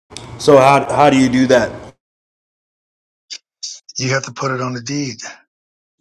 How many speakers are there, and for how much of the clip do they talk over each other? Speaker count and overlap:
two, no overlap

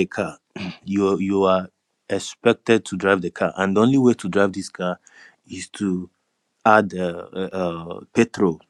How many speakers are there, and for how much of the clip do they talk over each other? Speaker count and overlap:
one, no overlap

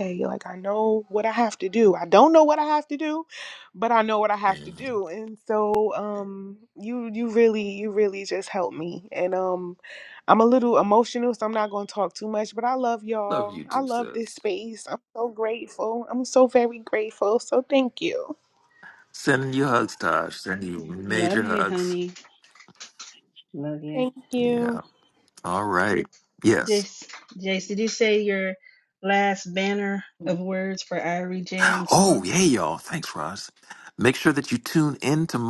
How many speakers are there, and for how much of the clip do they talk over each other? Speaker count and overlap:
three, about 8%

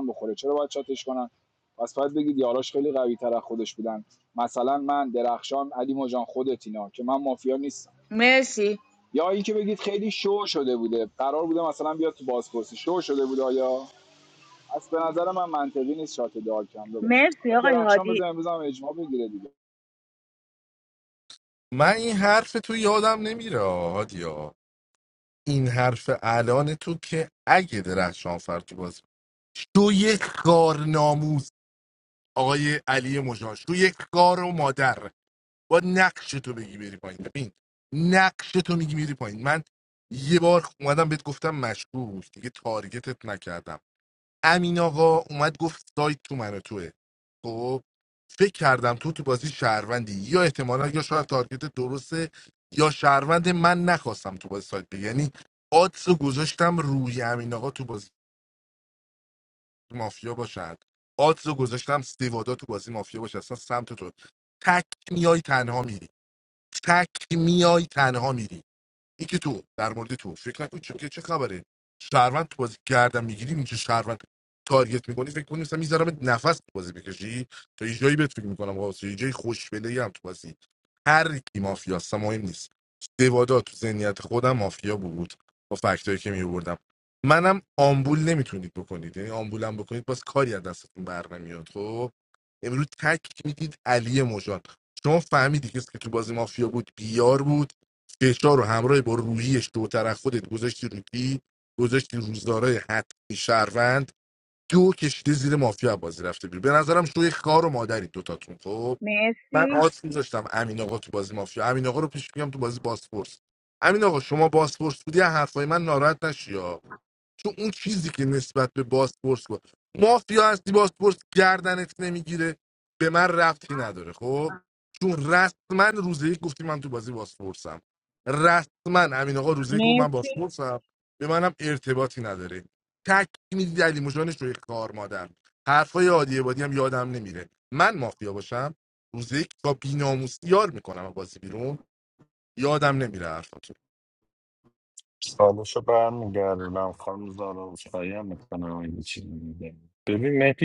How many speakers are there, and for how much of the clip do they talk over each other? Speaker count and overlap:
four, about 1%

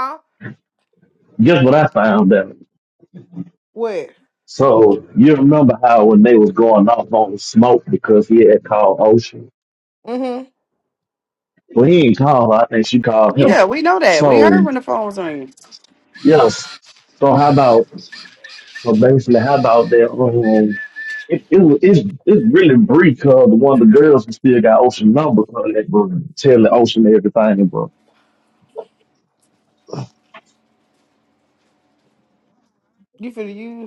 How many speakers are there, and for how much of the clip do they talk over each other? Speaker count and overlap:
three, about 2%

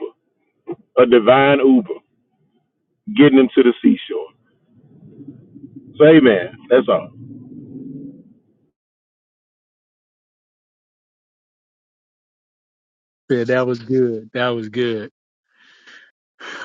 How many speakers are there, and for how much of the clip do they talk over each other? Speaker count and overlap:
two, no overlap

